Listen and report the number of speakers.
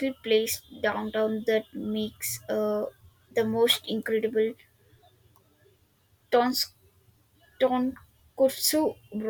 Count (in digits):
1